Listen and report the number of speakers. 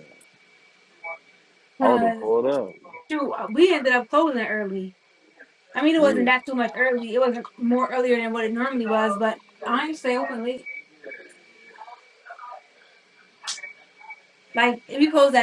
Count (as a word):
two